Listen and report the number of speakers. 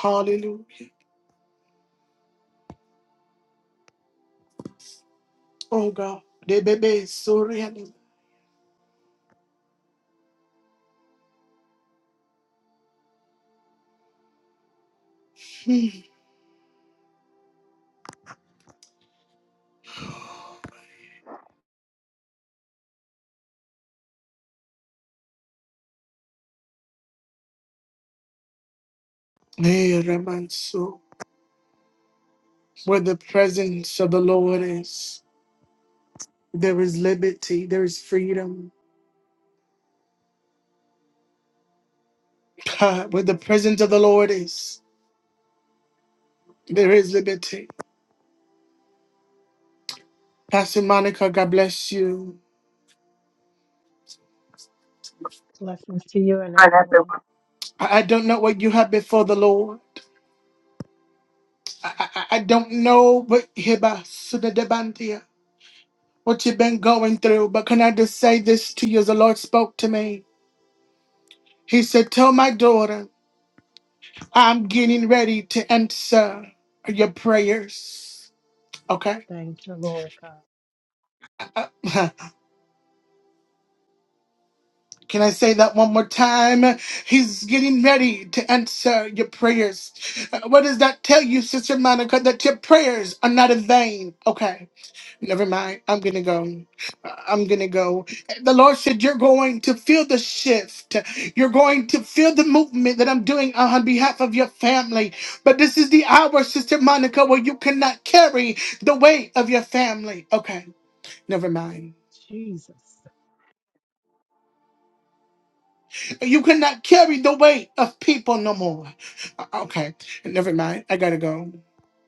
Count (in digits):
2